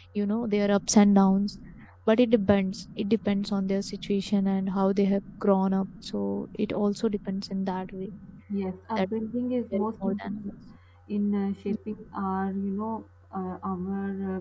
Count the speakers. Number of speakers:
two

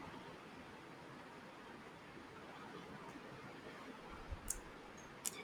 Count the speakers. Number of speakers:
zero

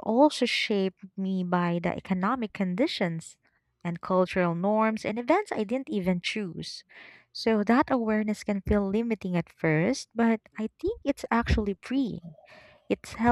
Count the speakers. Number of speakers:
one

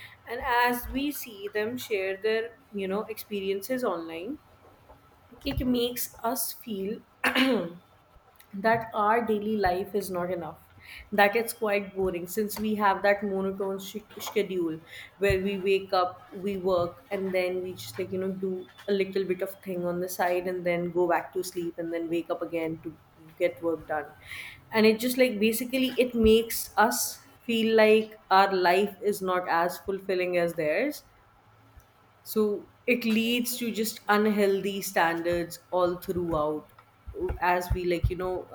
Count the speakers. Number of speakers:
one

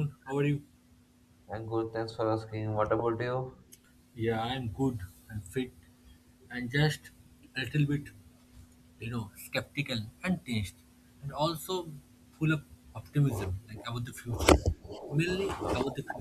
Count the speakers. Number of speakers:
two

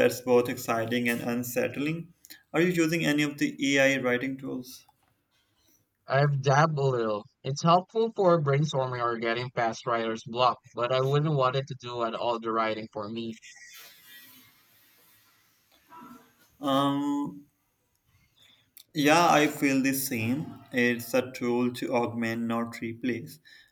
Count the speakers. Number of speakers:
two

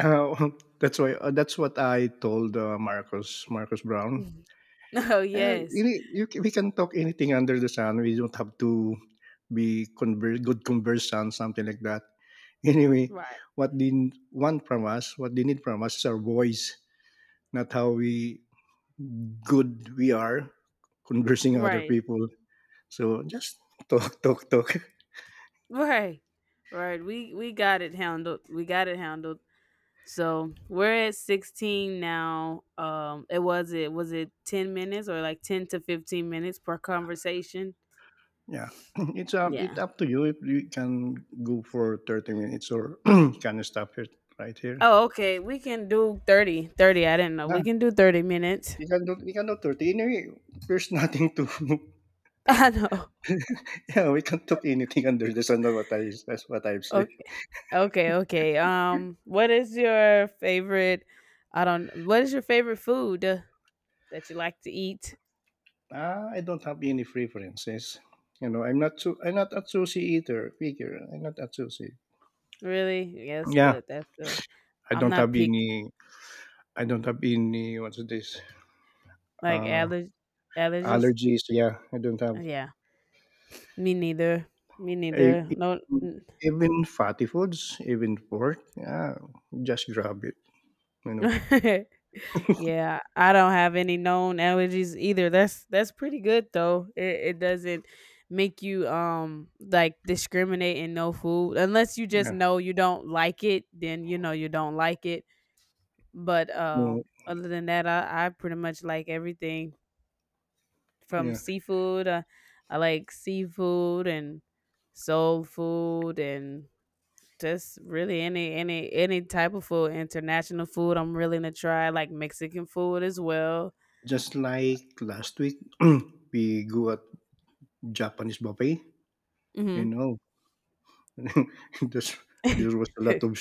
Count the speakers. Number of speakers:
two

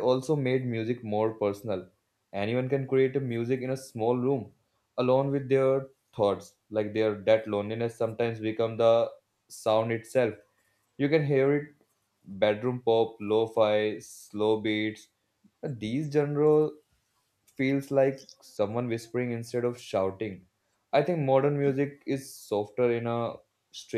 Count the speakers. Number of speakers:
one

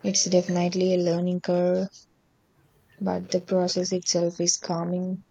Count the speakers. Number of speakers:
one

